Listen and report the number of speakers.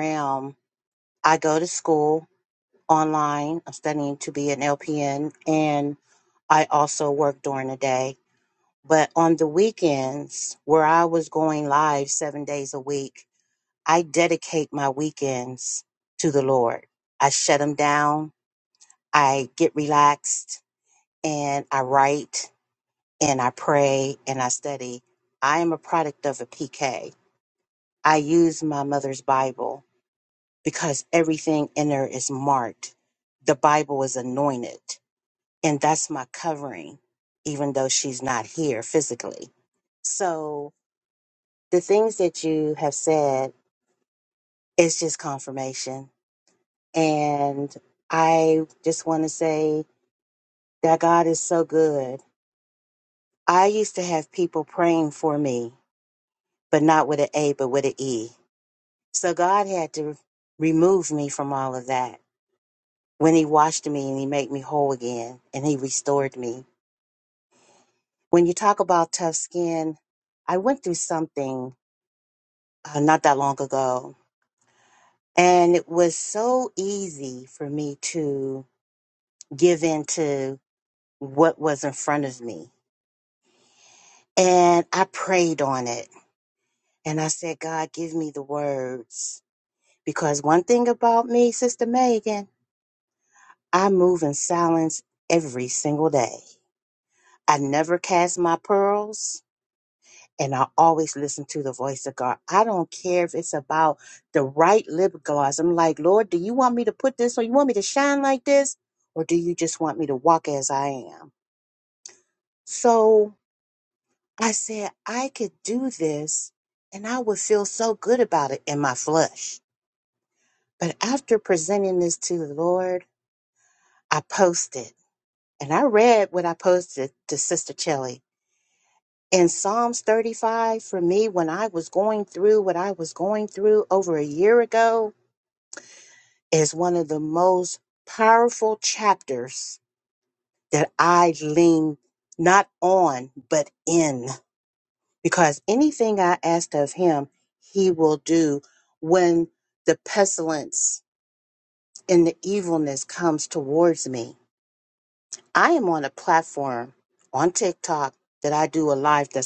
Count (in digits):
1